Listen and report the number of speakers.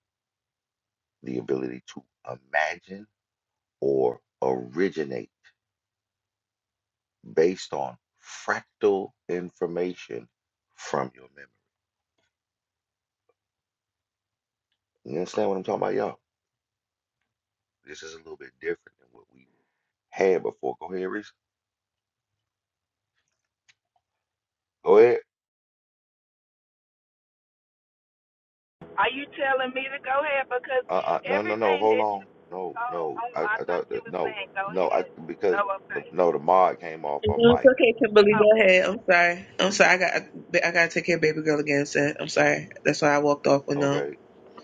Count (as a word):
three